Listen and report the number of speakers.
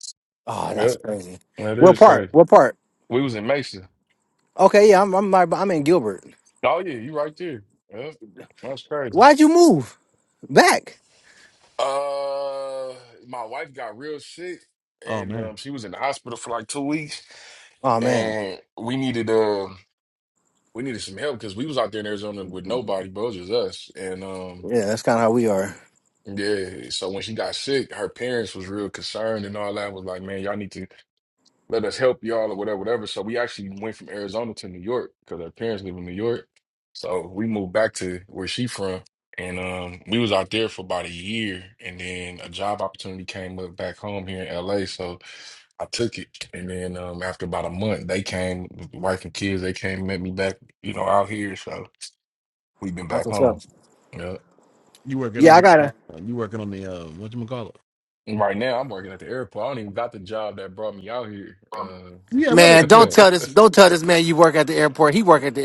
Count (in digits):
3